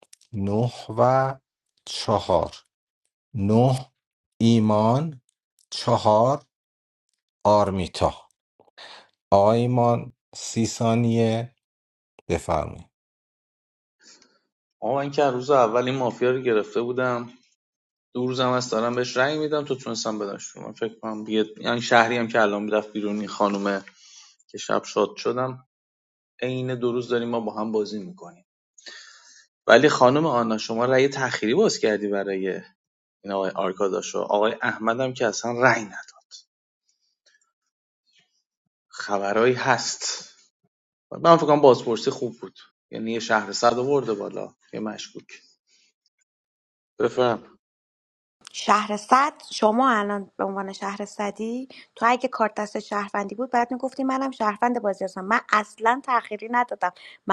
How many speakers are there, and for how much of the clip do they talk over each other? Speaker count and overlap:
three, no overlap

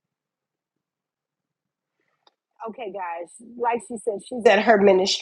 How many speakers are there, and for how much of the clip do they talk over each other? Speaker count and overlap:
one, no overlap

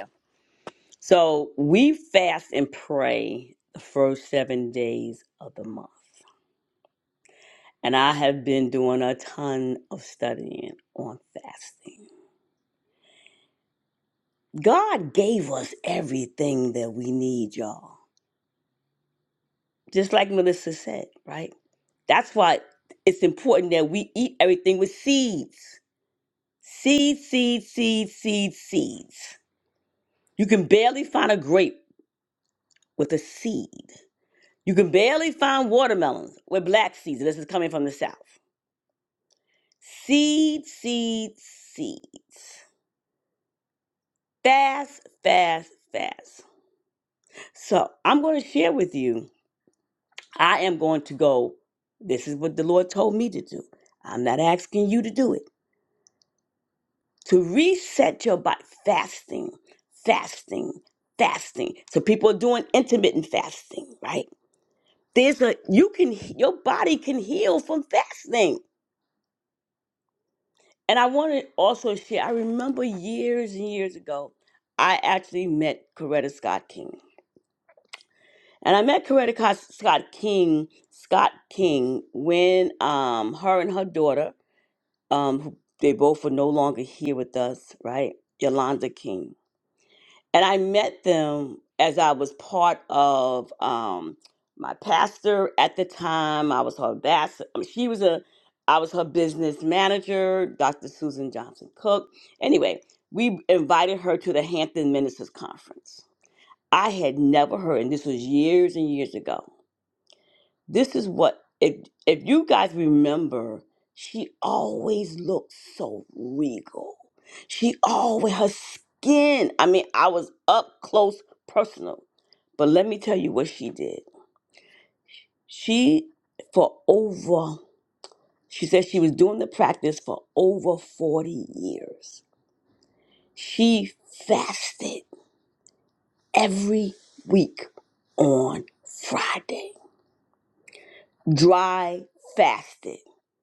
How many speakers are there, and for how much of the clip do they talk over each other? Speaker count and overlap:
one, no overlap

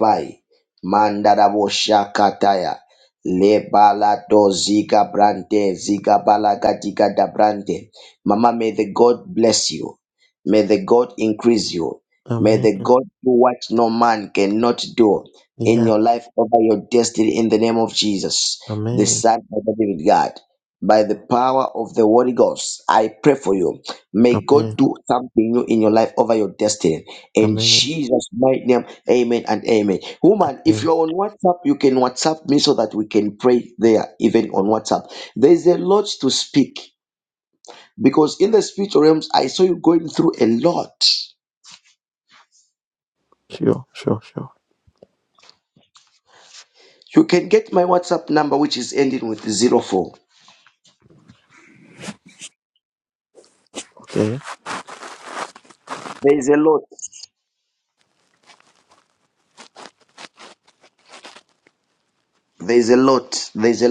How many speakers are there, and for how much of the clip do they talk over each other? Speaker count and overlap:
two, about 4%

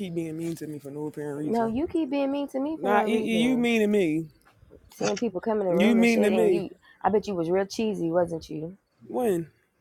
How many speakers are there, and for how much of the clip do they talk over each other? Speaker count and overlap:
two, about 21%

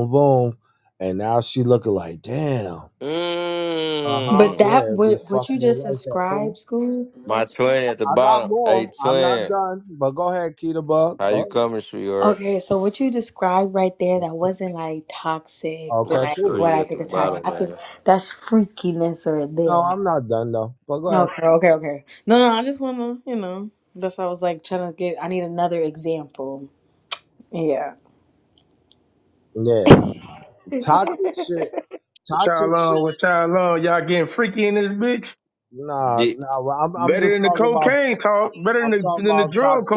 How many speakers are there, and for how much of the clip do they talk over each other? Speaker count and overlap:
four, about 24%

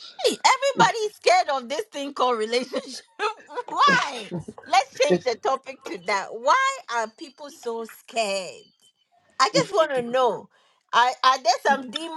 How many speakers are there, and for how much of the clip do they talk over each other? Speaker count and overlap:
one, no overlap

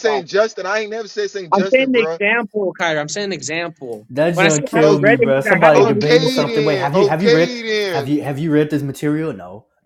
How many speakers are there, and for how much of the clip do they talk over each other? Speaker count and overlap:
three, about 44%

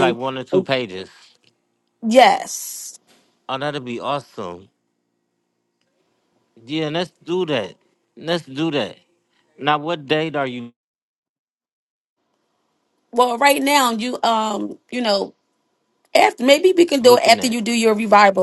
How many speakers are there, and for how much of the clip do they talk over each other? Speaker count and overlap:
two, about 4%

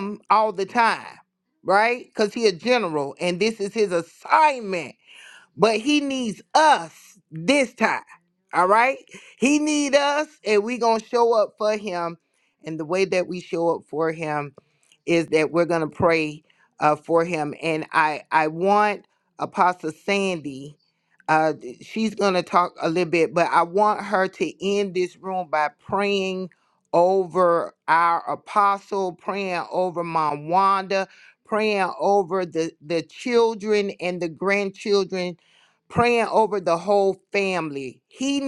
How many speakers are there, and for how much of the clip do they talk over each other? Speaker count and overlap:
one, no overlap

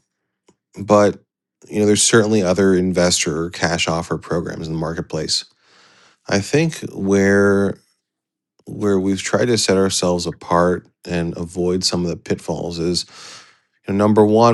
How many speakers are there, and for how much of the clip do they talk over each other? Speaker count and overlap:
one, no overlap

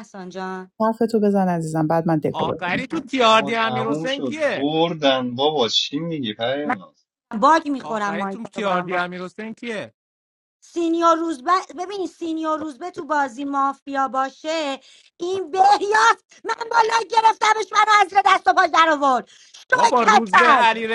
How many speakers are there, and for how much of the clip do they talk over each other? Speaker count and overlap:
four, about 20%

